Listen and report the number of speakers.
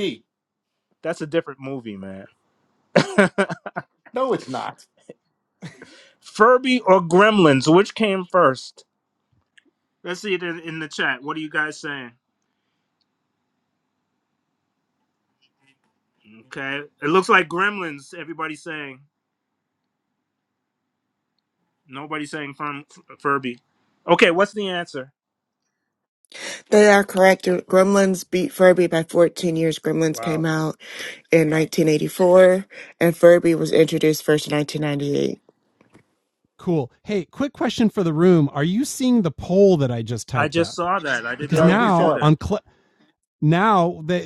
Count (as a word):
four